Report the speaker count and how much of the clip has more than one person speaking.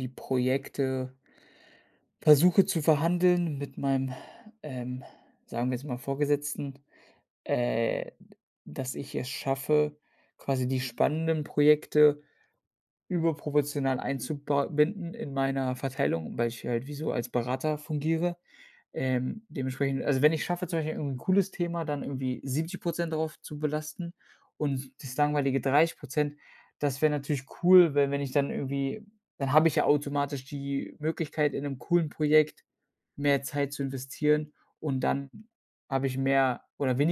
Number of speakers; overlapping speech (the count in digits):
1, no overlap